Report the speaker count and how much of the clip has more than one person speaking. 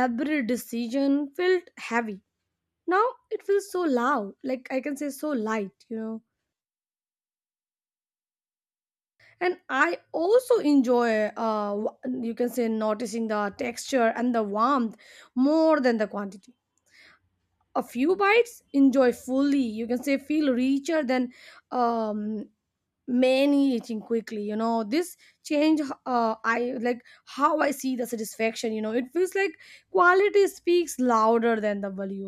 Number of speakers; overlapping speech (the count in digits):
1, no overlap